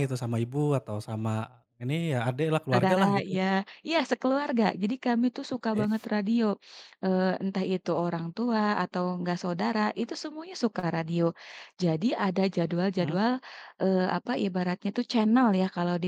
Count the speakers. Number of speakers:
2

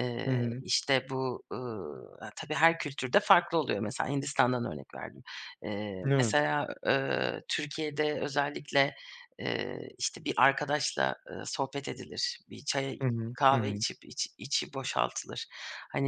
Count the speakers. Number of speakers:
2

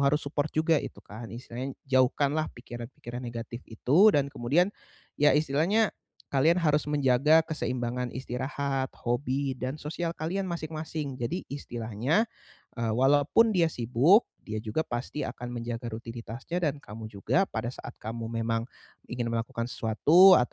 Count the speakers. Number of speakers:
1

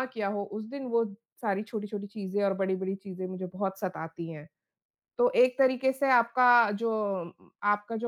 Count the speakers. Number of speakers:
1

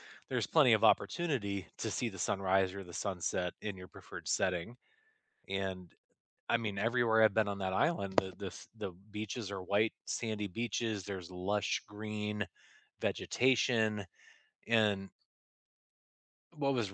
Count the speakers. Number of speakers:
1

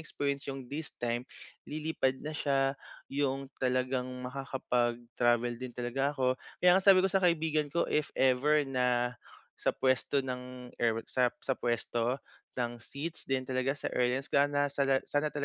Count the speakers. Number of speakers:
1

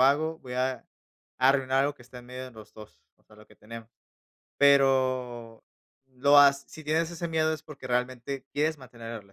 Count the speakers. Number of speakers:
1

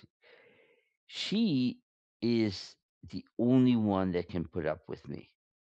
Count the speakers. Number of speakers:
1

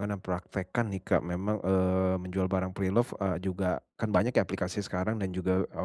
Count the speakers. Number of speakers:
1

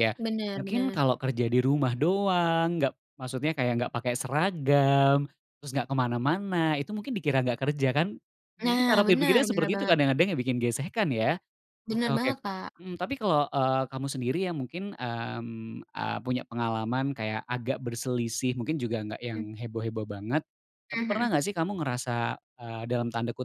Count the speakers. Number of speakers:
2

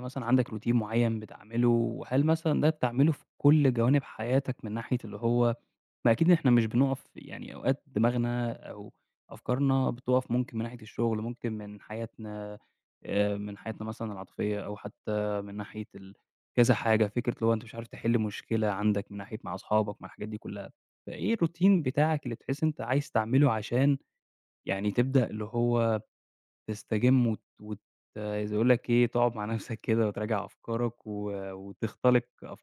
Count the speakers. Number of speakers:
1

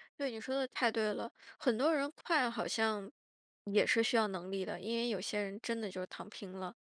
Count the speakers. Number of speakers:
1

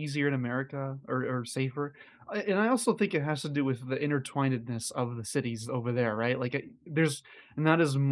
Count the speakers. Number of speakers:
1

